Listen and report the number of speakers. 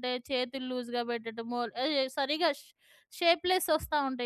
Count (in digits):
1